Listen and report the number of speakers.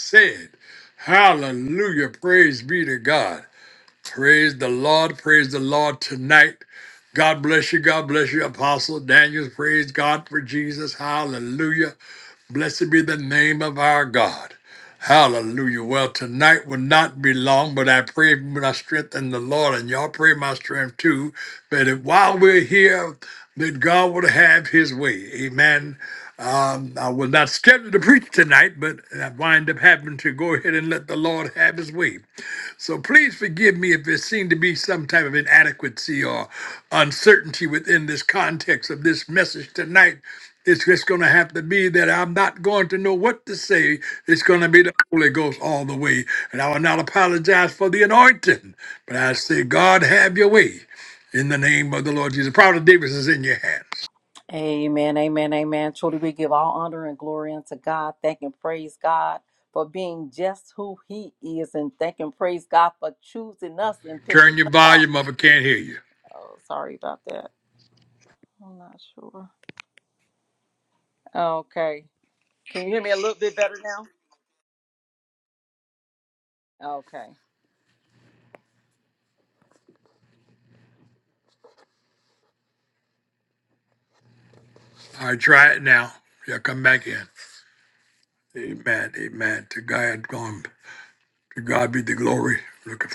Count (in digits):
2